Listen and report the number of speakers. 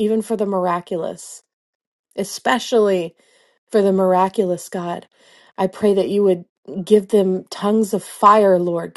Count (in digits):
1